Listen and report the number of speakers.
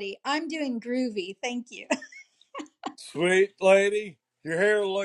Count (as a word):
two